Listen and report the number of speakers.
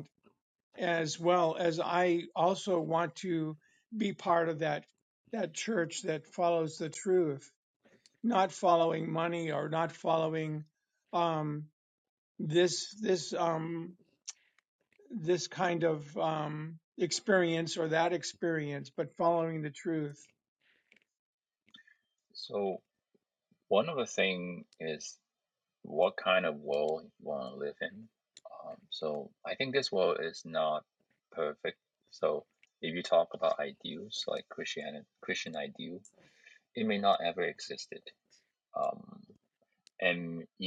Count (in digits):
2